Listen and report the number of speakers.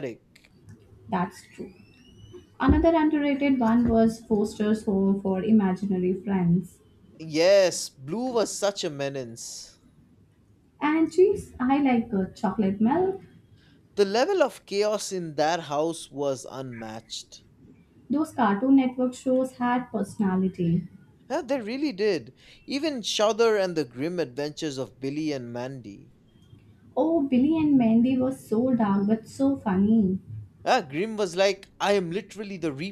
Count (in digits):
2